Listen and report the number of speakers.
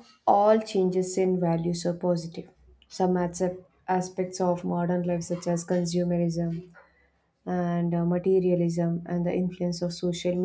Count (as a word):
one